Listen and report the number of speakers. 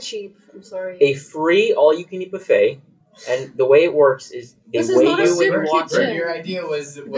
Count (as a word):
three